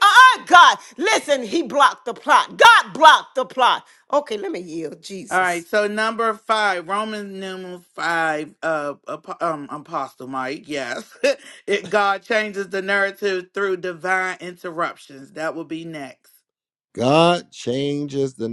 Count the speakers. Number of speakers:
3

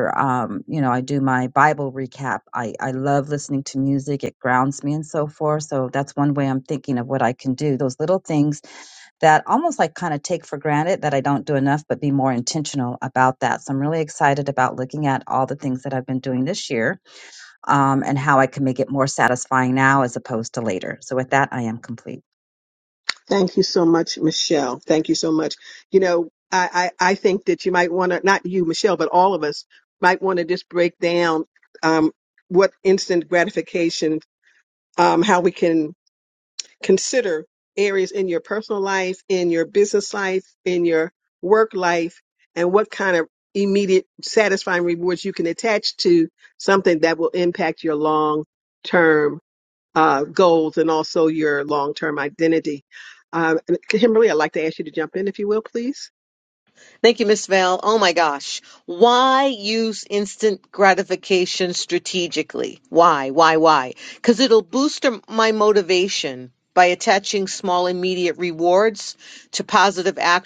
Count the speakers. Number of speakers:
3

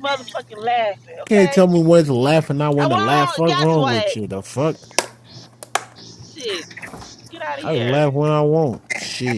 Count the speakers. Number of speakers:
2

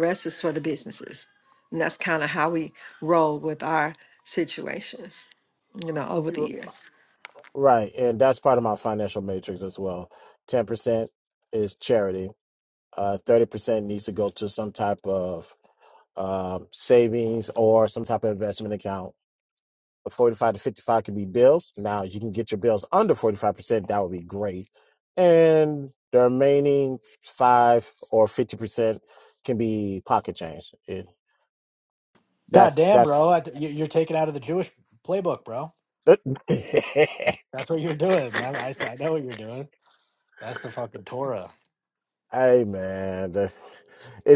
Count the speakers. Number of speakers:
3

